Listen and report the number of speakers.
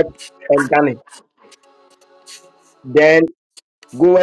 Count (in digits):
1